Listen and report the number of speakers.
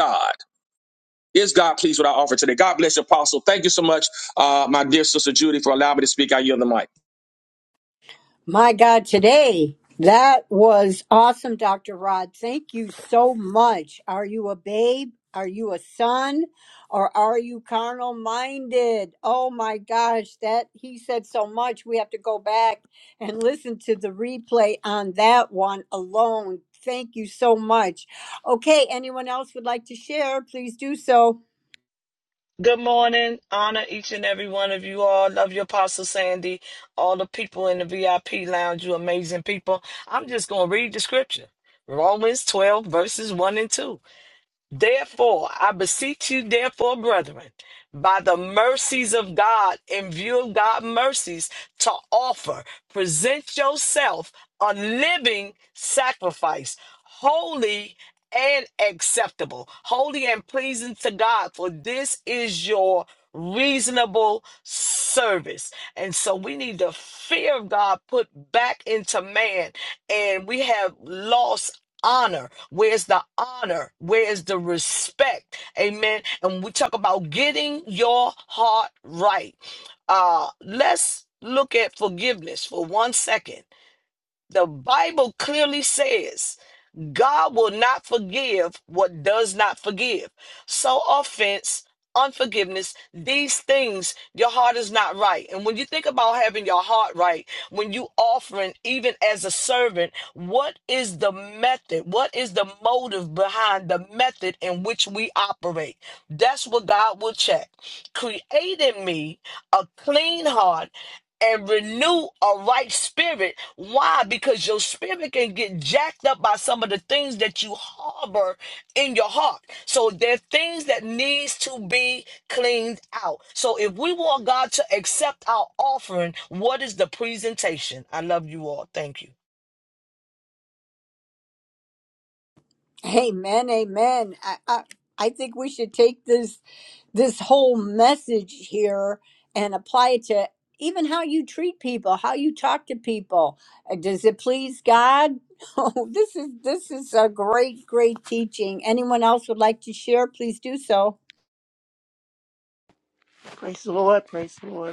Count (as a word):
four